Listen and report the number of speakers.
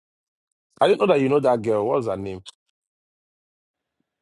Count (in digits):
1